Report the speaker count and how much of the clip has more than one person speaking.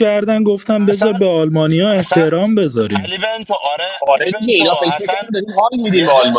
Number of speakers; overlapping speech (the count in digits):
3, about 41%